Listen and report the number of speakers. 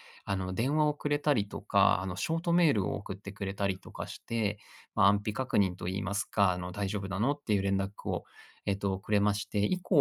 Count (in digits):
1